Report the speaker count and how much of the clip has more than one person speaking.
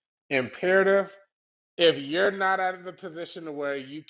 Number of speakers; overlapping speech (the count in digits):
1, no overlap